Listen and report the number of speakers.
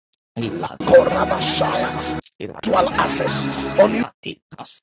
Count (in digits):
2